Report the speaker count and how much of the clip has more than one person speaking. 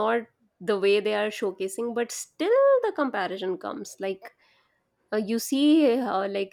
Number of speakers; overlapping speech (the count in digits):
1, no overlap